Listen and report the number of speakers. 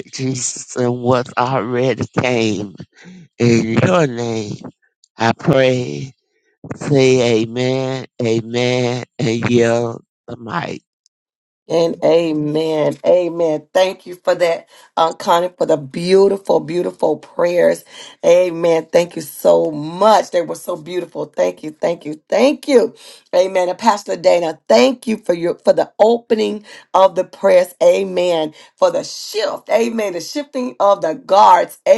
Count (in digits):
2